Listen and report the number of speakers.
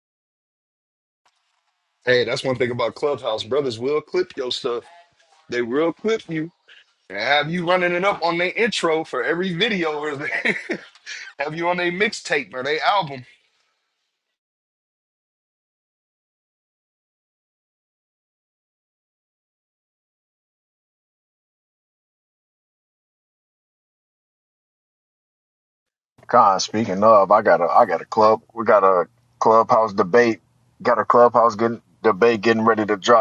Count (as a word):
two